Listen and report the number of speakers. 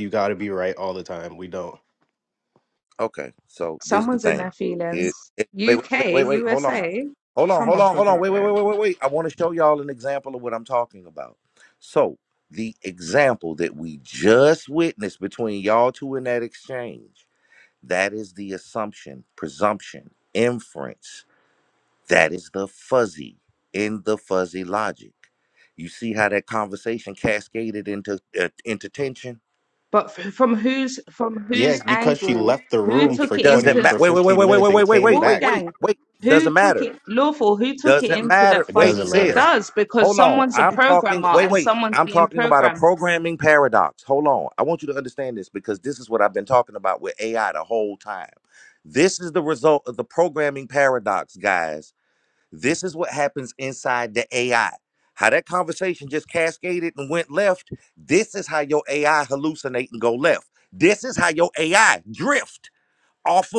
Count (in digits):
3